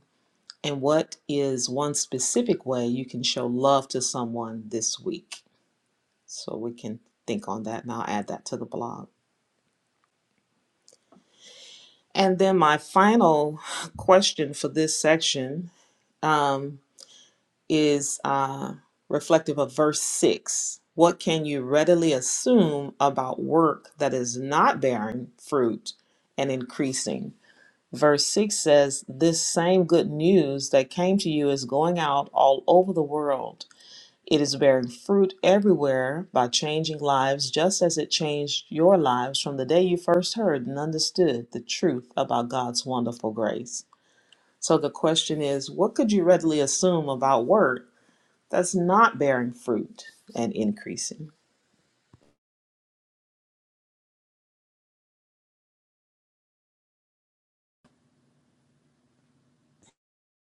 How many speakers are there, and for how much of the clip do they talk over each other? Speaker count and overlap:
1, no overlap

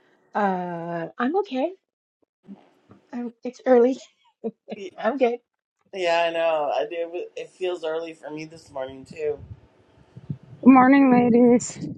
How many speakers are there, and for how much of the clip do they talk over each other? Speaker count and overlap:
3, no overlap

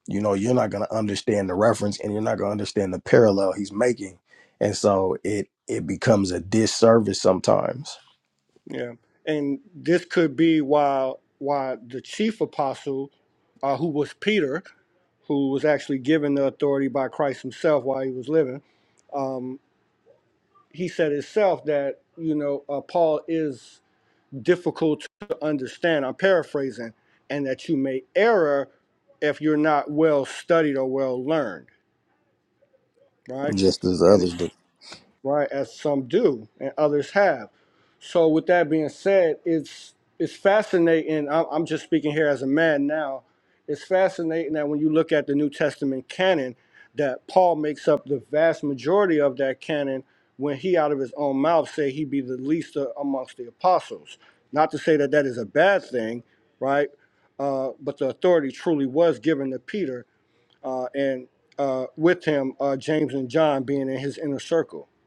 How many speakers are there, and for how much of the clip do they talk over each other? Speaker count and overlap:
2, under 1%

